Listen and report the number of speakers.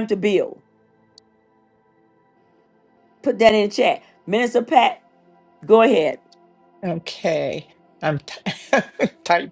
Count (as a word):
two